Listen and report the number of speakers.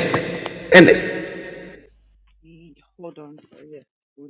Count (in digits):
2